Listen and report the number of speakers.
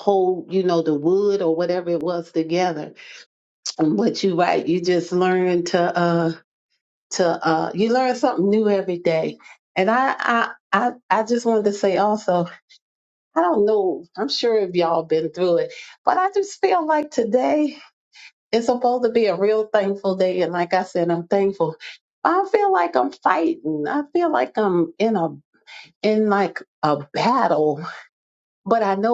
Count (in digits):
1